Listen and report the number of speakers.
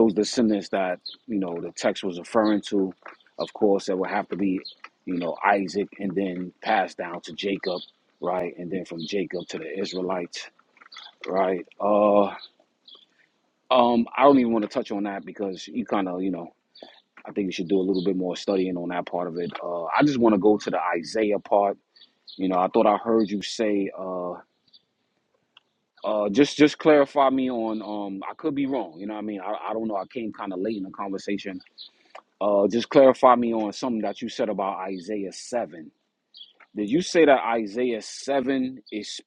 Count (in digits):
1